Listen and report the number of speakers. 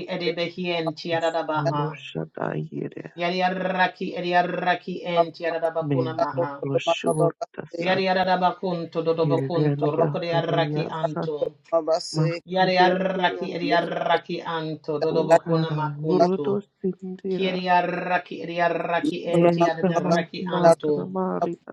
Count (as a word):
three